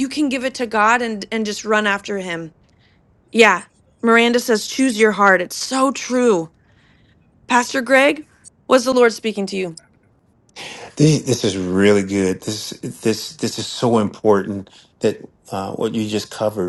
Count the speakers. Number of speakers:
two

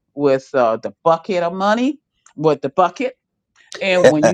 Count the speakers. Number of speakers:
one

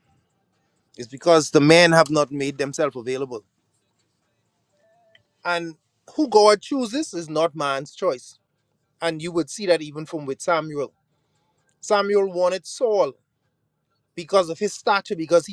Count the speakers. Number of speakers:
one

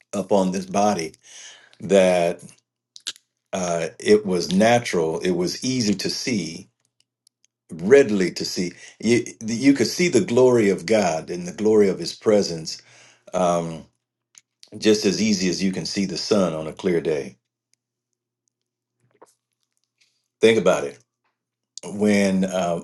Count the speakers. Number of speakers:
one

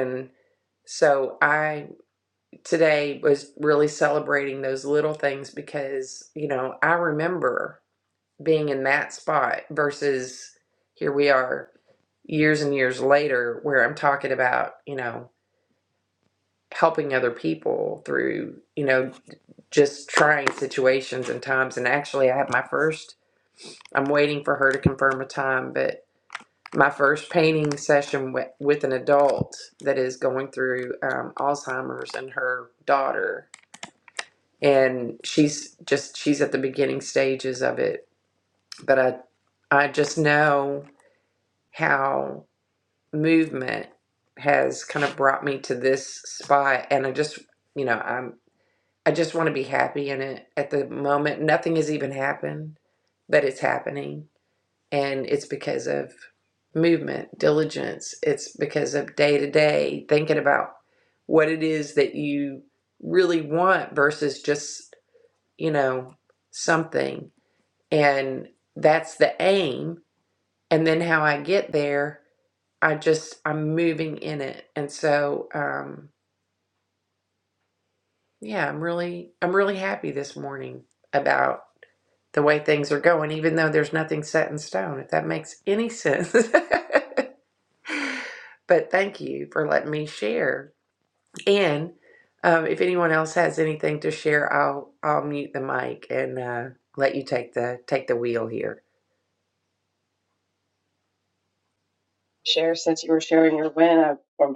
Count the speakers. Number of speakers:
two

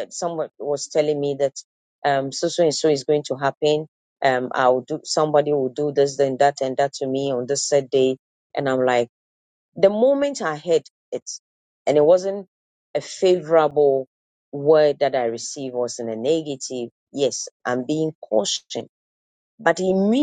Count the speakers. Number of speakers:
one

